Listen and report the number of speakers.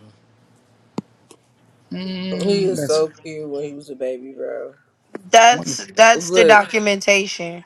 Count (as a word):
three